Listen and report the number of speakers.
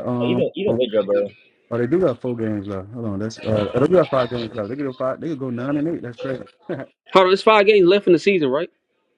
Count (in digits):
3